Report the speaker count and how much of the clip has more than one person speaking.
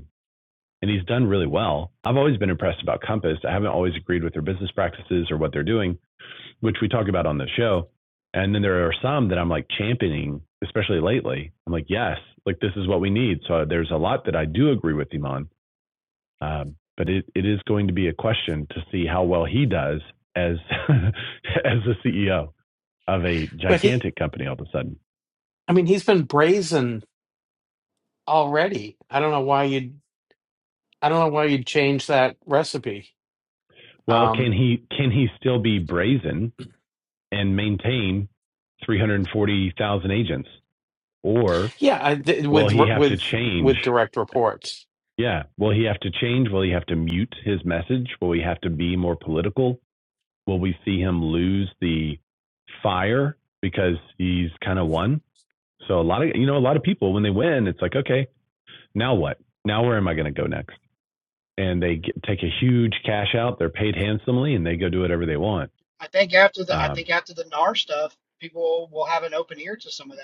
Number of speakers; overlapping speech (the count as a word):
three, about 3%